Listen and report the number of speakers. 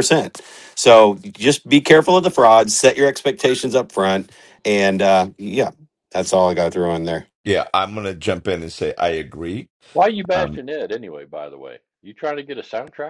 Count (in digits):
3